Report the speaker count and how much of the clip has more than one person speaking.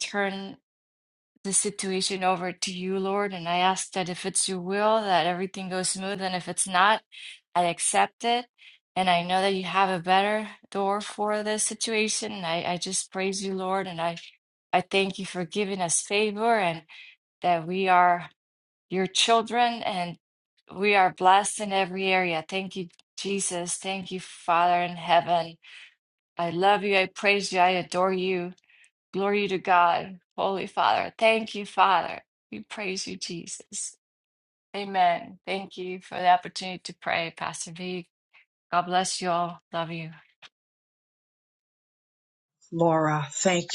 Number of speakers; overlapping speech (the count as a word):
two, no overlap